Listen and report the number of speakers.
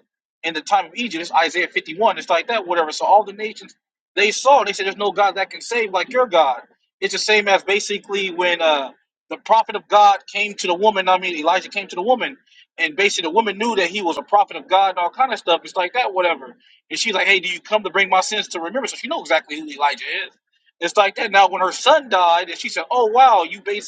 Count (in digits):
1